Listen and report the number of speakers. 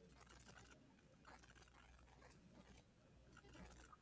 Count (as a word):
zero